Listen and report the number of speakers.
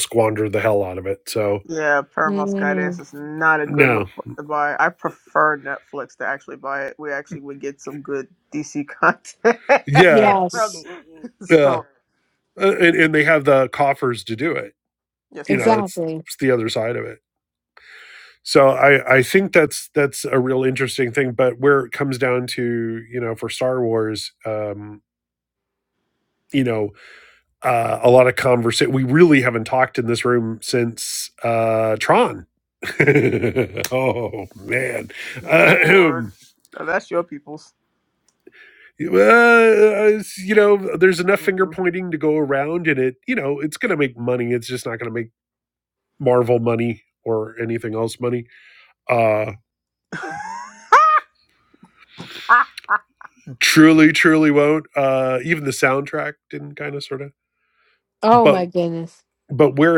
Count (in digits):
3